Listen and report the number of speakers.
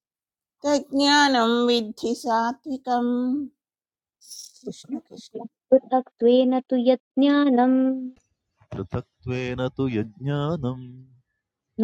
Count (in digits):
3